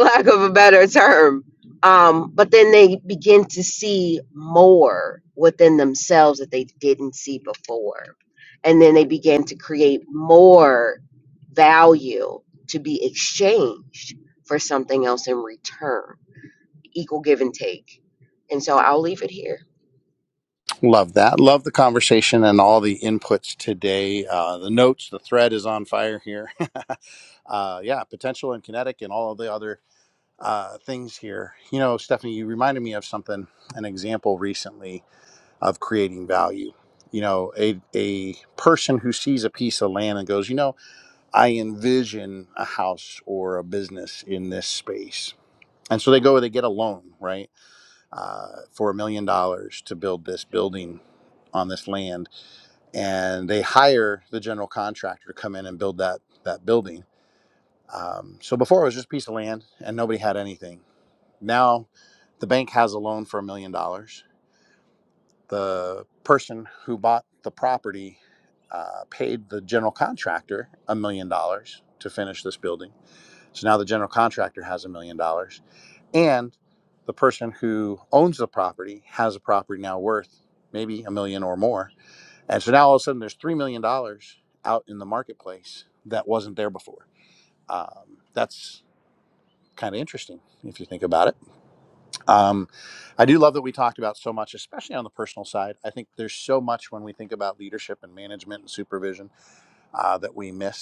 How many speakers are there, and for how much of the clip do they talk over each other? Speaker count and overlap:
two, no overlap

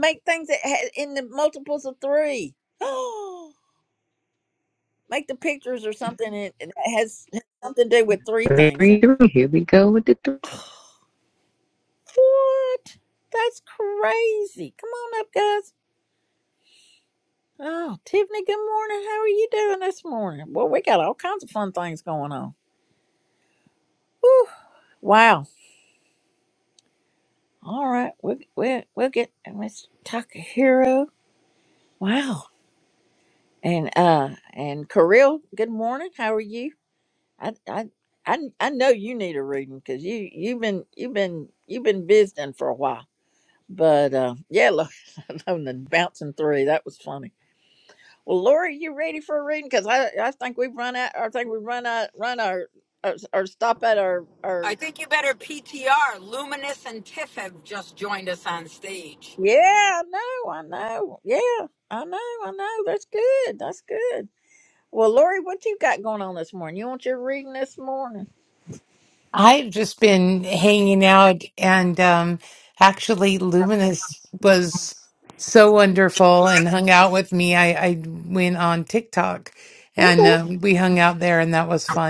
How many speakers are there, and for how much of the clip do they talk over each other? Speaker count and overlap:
four, about 1%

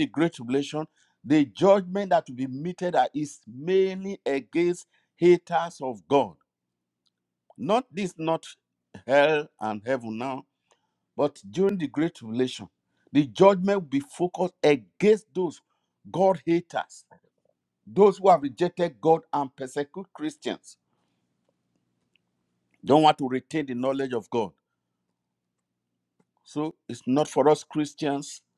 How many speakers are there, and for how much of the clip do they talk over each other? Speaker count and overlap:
one, no overlap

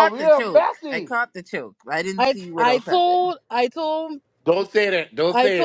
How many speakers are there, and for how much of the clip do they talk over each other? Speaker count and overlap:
three, about 43%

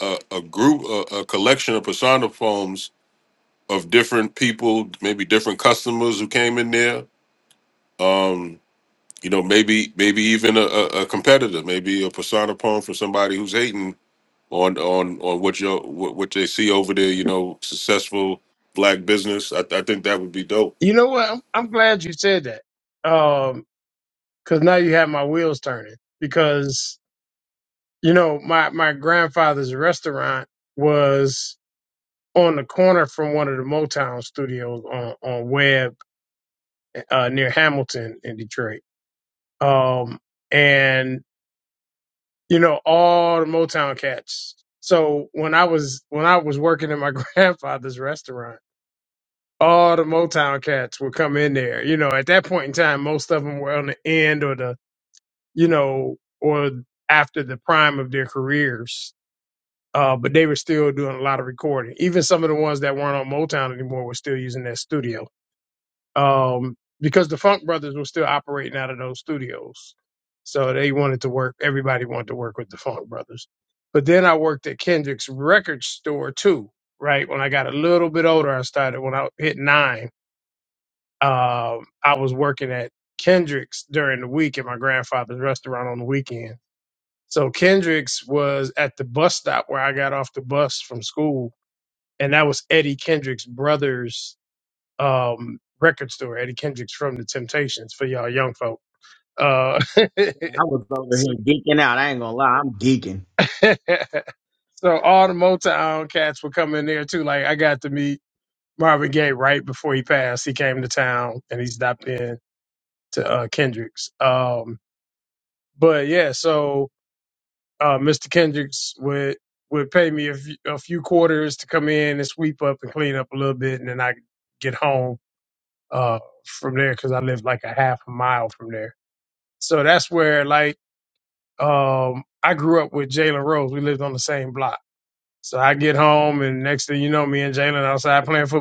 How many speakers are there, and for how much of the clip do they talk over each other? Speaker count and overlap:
three, under 1%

